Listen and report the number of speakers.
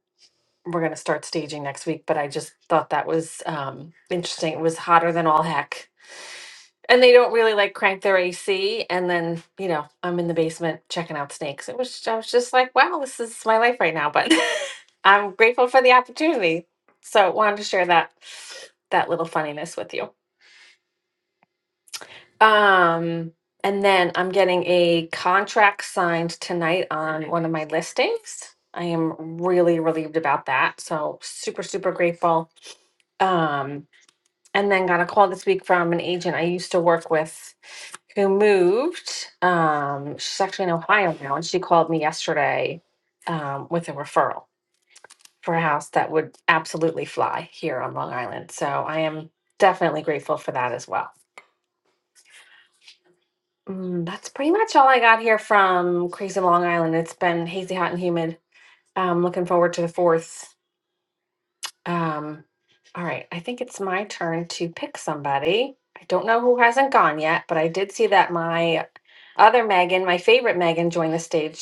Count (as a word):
one